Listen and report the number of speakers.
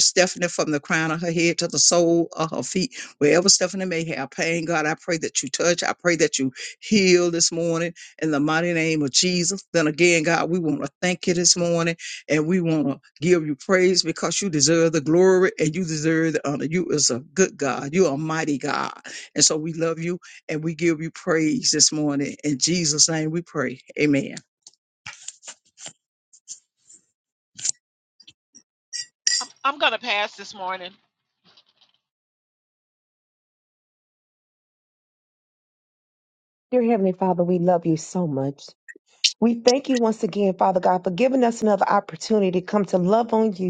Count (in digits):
3